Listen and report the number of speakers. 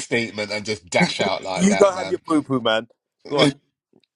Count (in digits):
2